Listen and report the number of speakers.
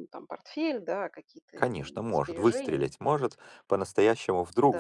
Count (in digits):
2